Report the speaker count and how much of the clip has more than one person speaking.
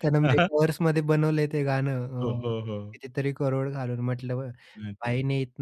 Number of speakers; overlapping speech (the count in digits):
2, about 9%